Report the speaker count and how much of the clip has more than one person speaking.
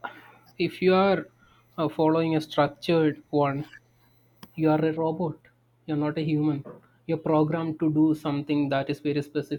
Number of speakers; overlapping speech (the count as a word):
one, no overlap